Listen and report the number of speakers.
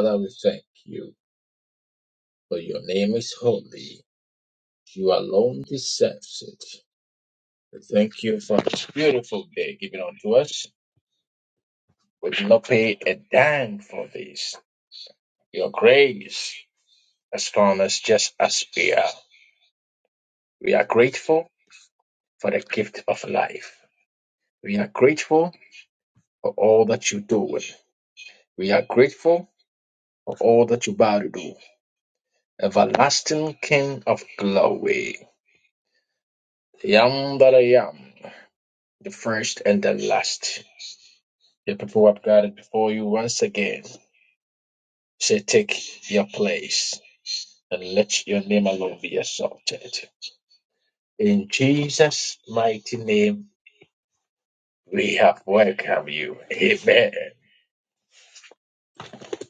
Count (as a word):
one